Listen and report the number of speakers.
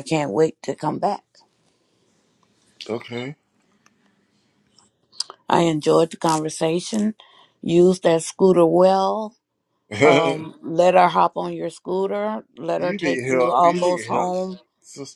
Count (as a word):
two